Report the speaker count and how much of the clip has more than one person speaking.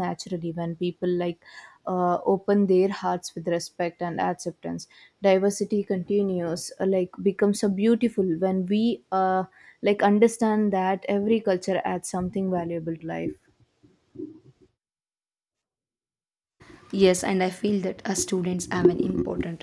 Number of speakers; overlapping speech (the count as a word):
two, no overlap